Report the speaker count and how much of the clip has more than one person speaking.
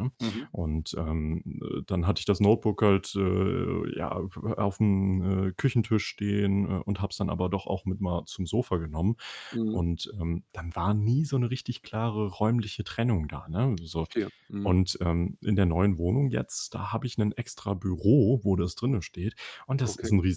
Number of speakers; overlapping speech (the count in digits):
2, about 2%